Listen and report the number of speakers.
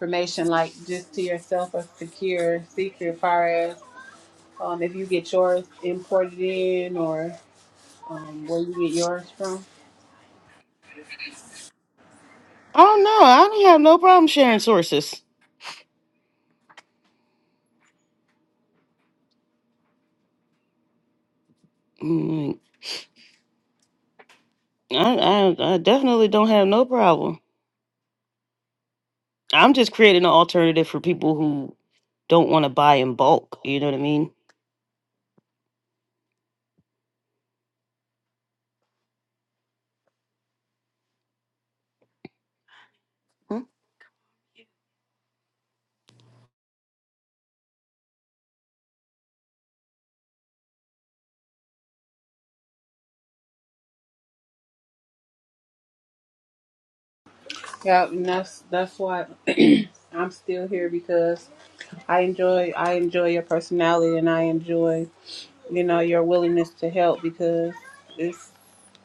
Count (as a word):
two